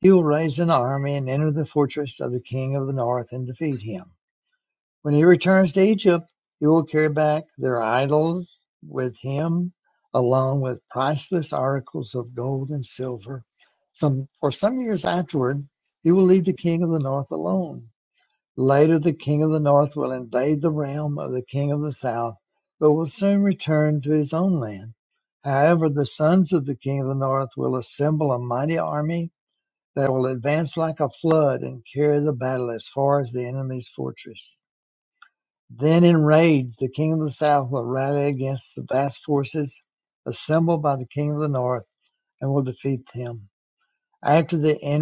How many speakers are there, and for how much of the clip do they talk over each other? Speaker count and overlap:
1, no overlap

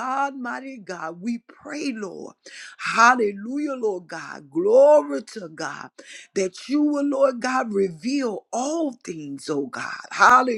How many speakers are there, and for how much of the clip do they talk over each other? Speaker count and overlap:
1, no overlap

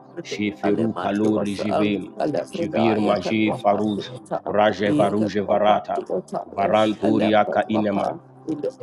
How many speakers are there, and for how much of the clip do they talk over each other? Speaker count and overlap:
2, about 66%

